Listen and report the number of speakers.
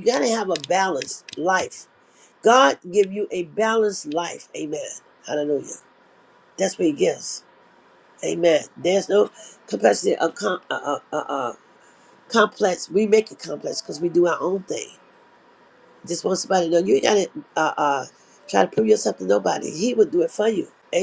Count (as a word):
one